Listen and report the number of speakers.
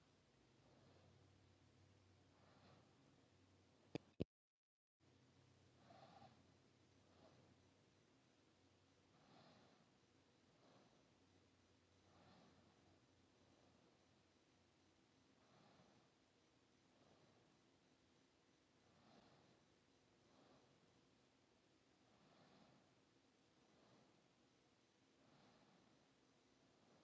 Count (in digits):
0